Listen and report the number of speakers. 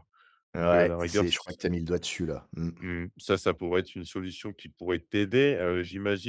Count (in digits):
2